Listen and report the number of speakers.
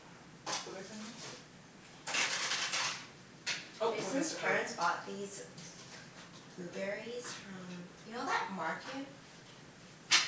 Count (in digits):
1